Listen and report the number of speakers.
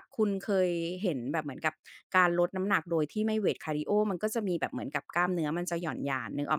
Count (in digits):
1